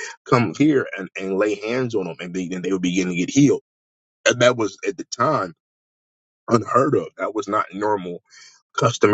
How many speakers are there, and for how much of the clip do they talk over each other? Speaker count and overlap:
1, no overlap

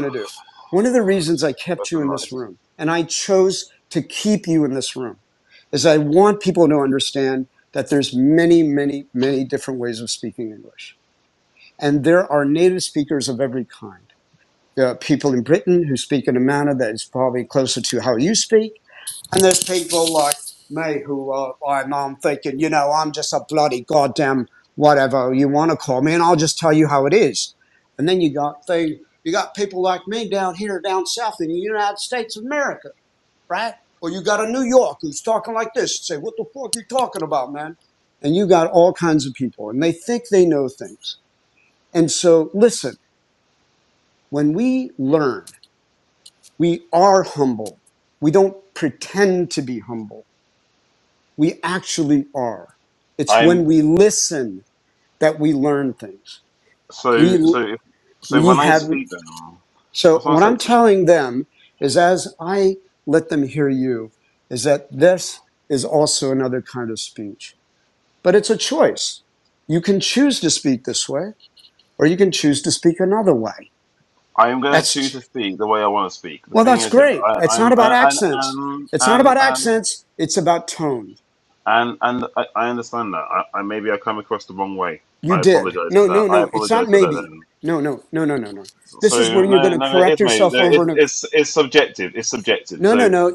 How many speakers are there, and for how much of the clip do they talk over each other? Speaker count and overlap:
2, about 10%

